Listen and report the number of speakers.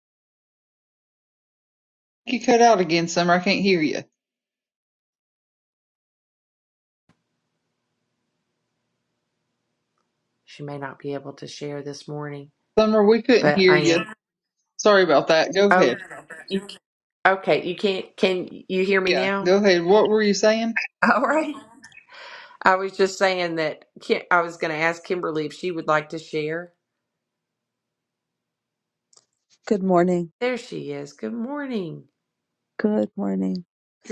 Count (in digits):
3